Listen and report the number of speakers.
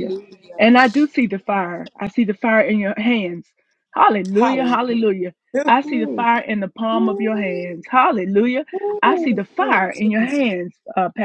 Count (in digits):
2